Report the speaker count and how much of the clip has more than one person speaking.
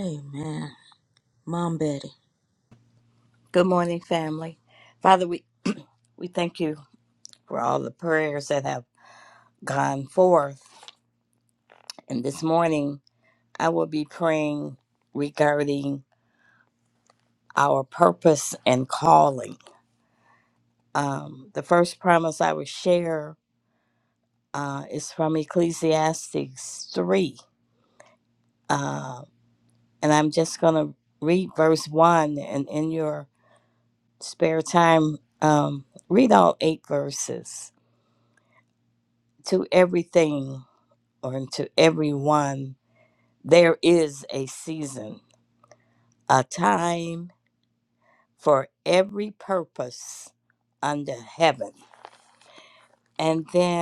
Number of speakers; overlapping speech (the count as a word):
two, no overlap